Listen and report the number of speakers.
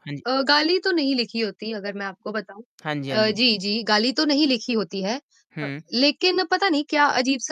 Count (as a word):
two